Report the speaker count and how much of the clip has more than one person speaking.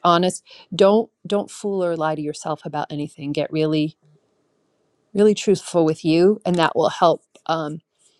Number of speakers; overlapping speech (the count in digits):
1, no overlap